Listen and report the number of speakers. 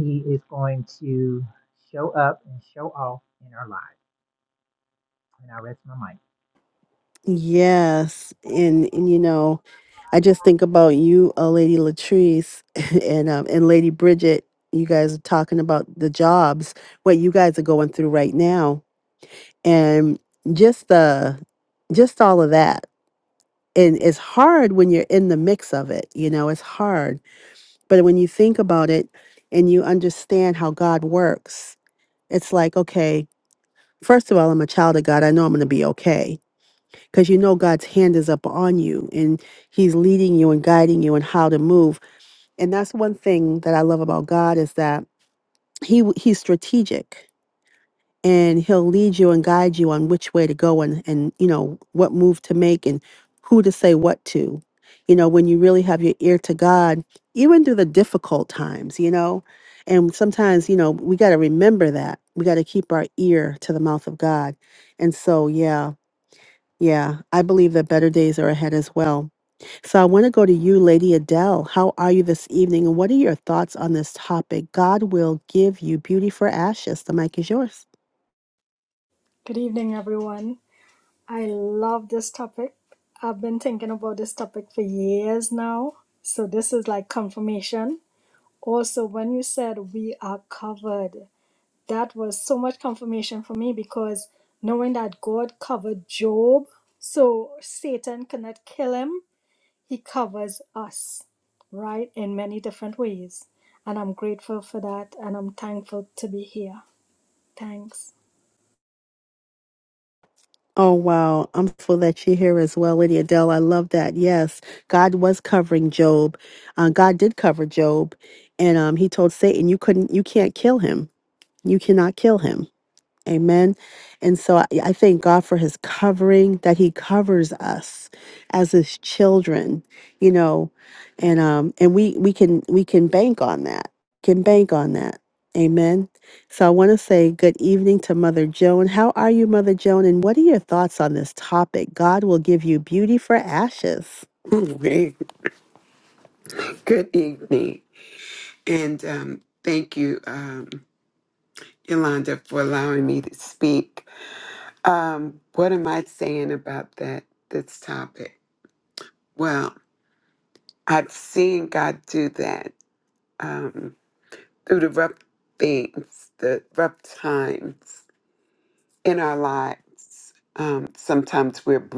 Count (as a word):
four